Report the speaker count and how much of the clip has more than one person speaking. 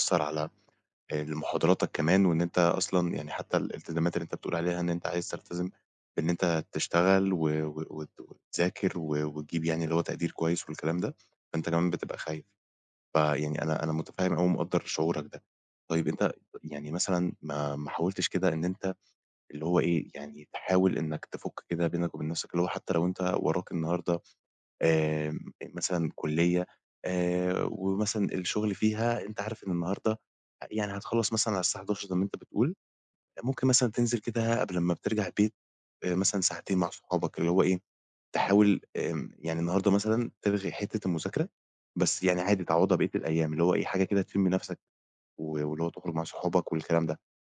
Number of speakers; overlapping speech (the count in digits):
1, no overlap